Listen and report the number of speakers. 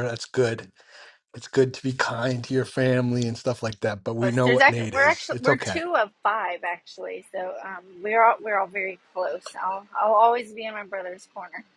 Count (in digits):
2